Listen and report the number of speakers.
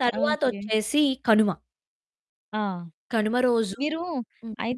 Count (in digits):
2